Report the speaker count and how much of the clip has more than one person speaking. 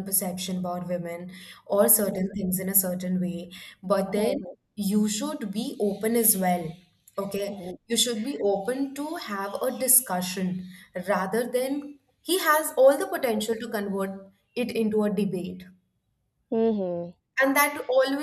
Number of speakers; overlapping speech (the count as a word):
two, about 5%